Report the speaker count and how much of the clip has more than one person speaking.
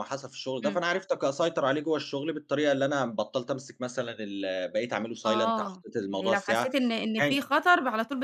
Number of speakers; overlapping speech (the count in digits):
2, about 19%